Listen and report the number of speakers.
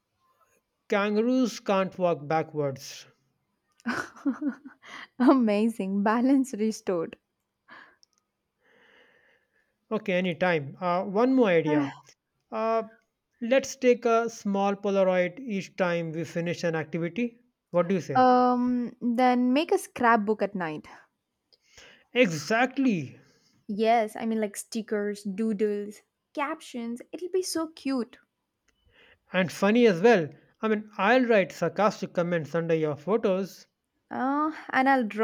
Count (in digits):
2